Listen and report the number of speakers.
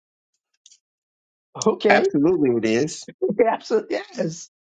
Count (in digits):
2